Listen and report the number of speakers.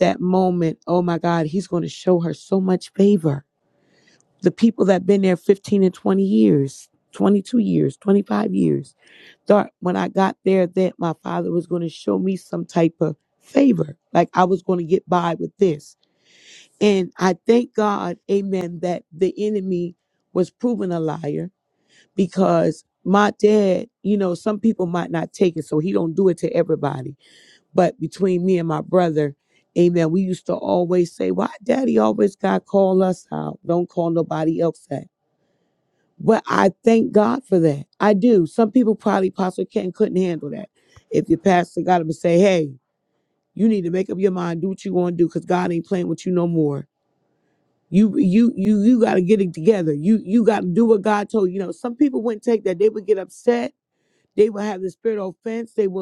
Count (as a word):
one